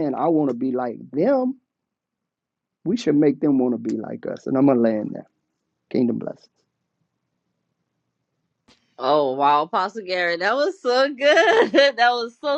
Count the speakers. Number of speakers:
2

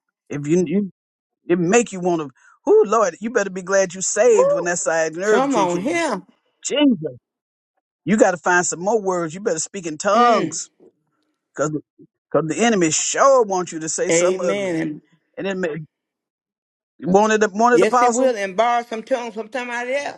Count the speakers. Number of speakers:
2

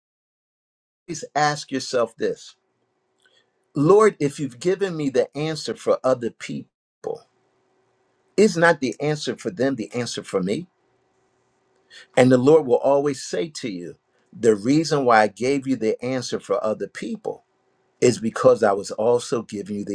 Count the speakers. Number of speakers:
1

